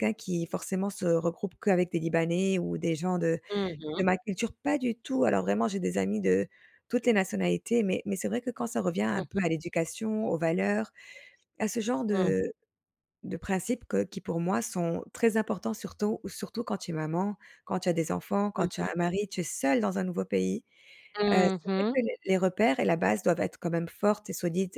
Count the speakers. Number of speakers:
two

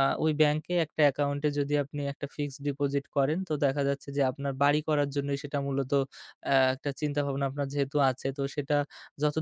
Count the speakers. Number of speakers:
one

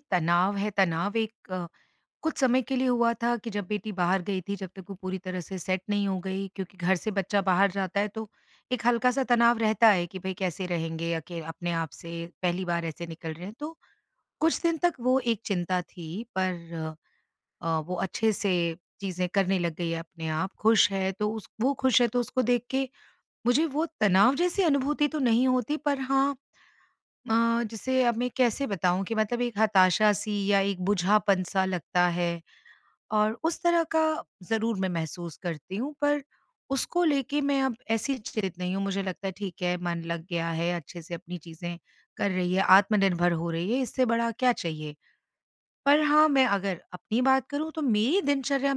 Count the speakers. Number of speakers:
one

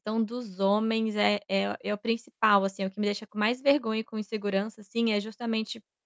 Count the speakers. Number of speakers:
one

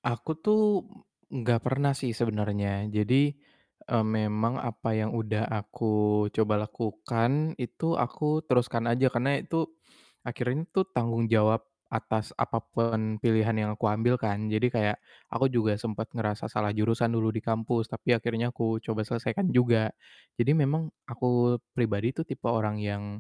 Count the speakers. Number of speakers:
one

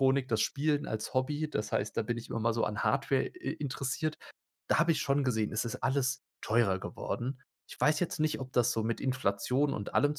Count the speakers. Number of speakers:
one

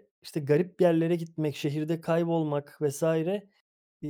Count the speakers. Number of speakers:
one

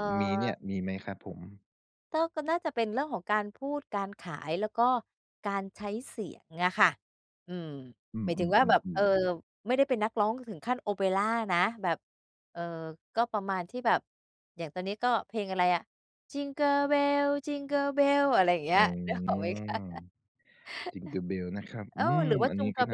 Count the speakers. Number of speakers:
two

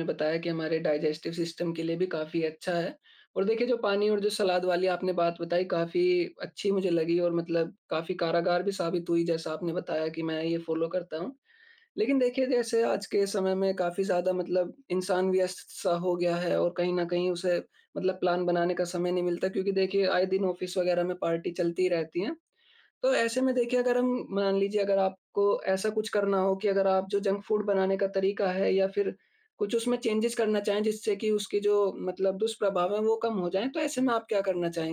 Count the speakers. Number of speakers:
one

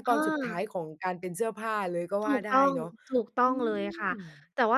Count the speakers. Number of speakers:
two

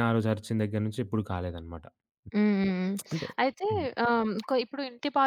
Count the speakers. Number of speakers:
two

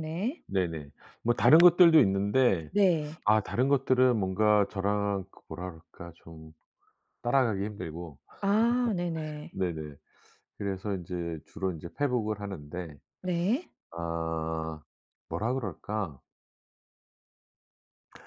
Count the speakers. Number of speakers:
two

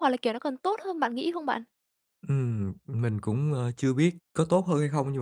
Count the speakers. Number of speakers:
two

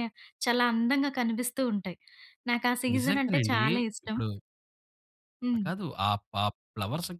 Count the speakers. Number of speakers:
two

